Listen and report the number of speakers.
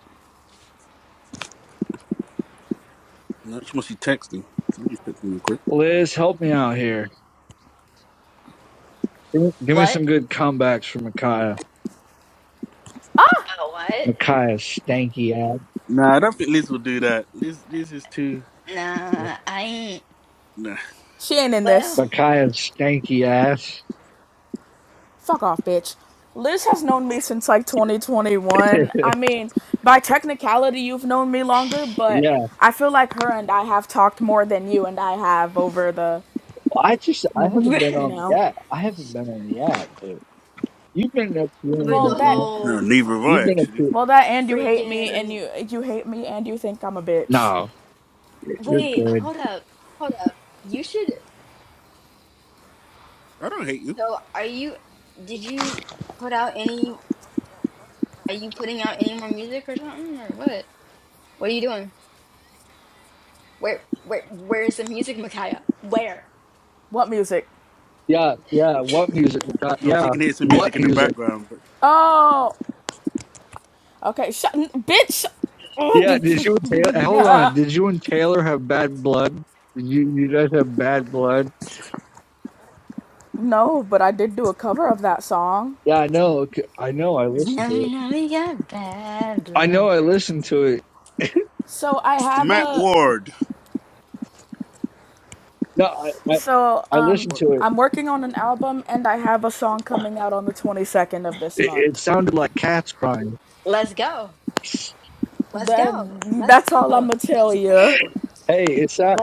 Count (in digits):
4